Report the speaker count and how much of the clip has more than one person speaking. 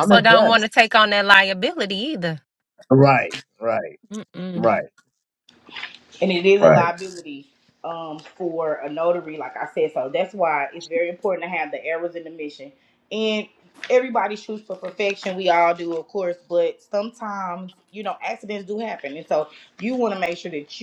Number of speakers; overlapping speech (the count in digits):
3, about 4%